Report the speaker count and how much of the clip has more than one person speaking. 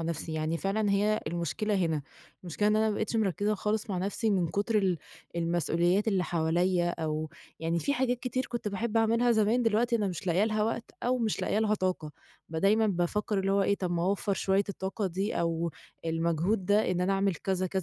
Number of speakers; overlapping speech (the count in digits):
1, no overlap